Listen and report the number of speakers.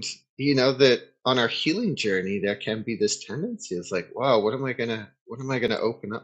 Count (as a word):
one